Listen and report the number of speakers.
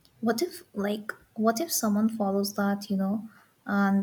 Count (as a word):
one